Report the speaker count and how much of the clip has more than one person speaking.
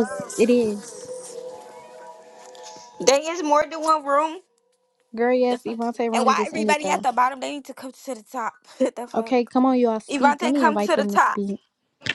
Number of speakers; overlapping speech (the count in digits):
2, about 23%